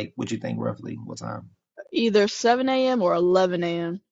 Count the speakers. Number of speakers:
2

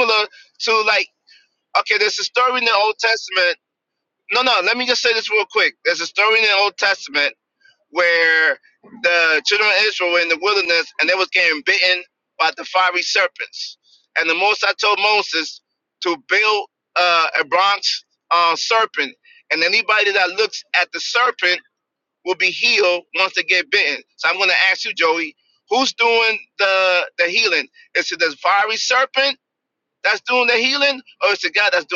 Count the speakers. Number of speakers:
1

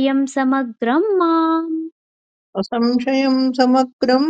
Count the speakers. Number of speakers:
2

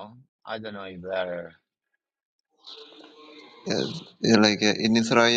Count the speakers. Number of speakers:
2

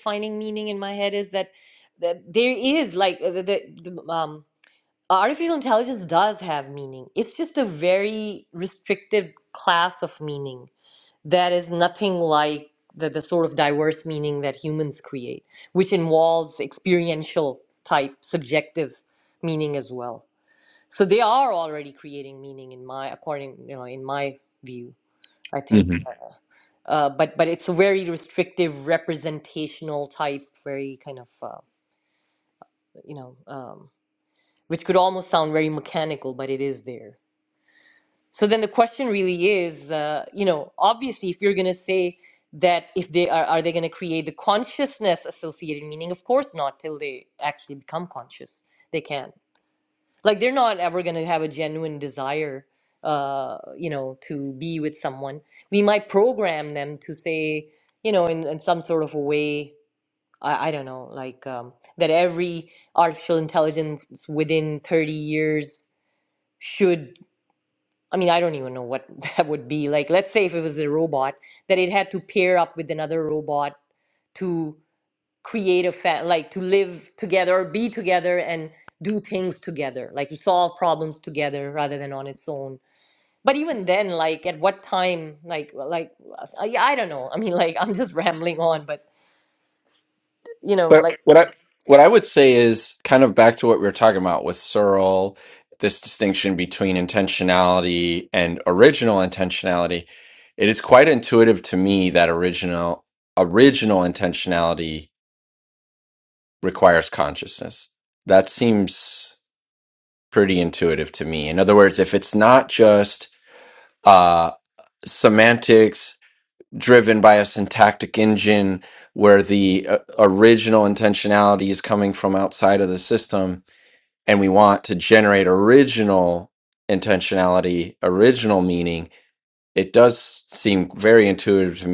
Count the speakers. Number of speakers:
2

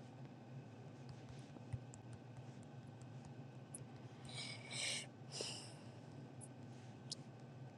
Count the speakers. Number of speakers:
0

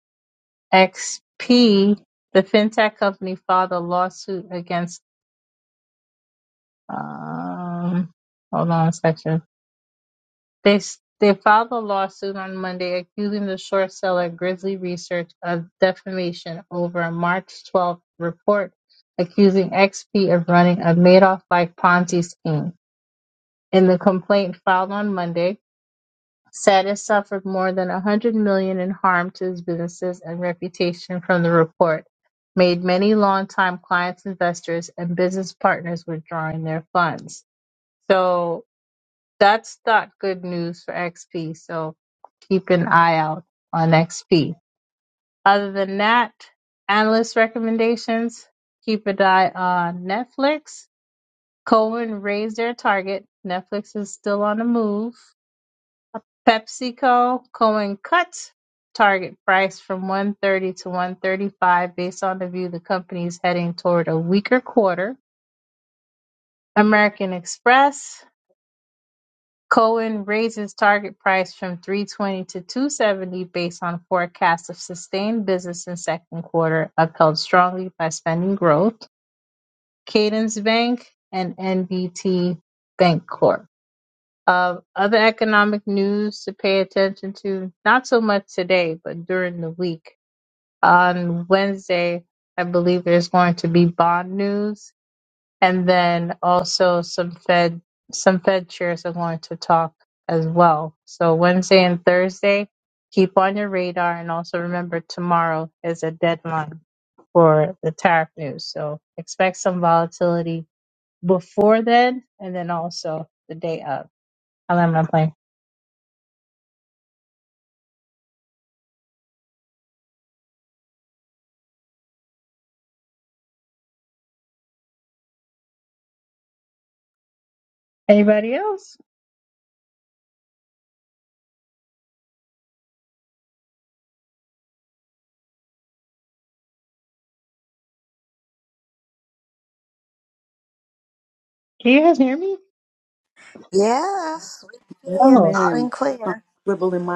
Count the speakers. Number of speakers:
3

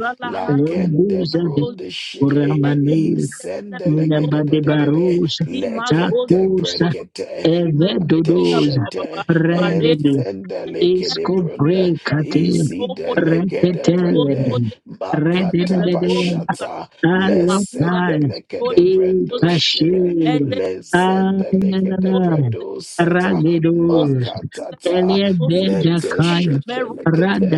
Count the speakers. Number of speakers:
3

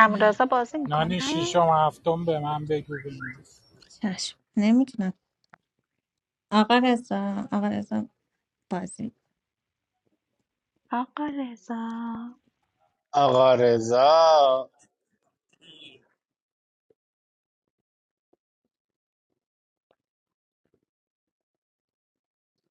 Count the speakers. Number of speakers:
4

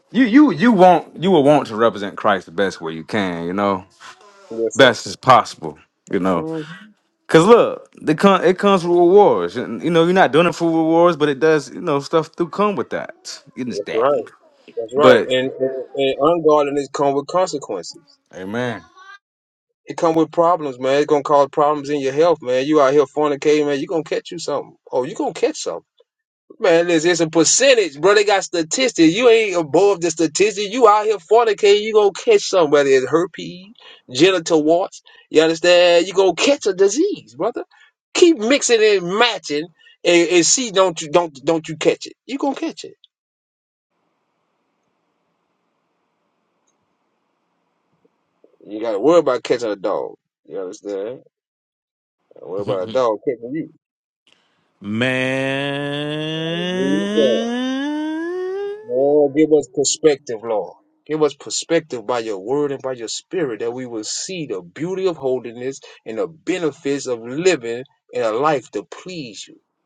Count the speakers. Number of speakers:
3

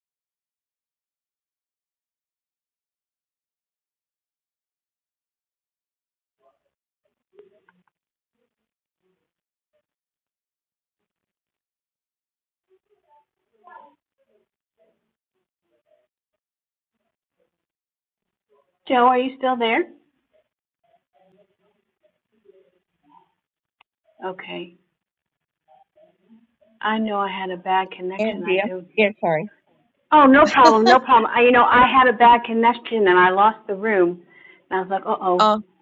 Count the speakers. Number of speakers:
2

